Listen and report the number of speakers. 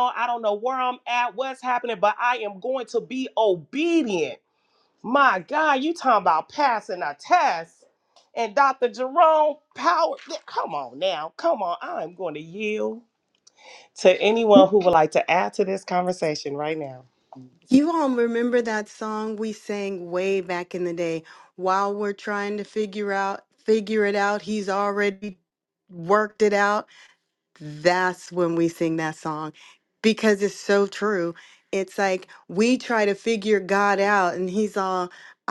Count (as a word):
two